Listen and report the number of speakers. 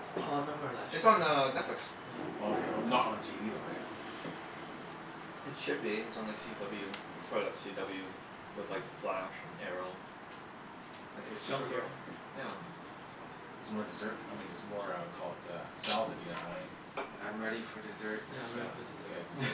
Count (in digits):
4